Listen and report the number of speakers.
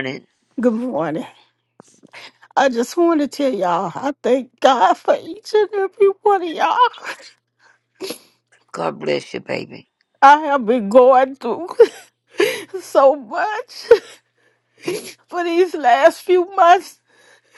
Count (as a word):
two